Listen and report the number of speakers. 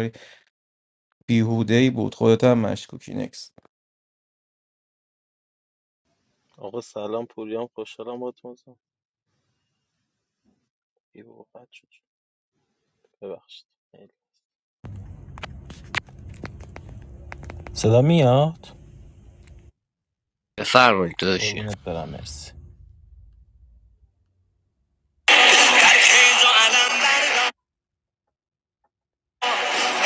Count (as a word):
three